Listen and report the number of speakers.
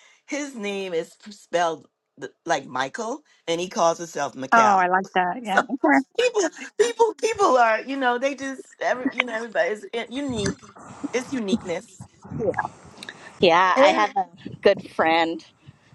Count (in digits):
3